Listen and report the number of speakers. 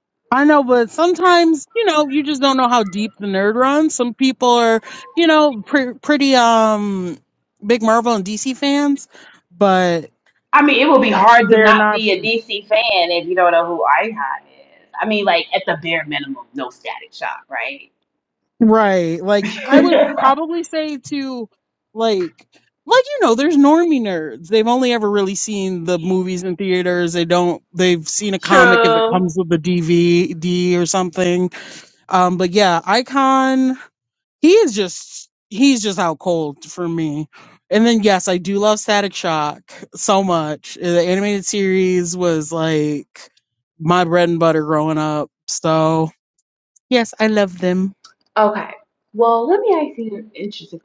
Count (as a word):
two